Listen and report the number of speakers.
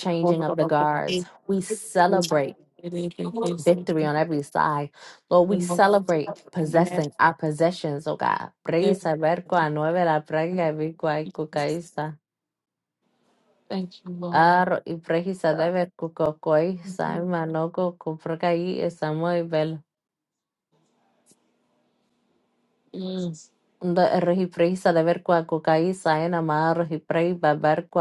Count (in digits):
2